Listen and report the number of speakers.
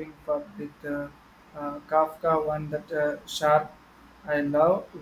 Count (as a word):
one